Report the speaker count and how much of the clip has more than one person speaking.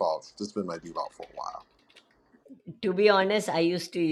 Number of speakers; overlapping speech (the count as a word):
two, no overlap